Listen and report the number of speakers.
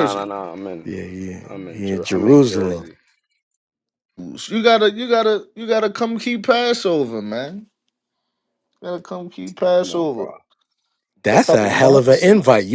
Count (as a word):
three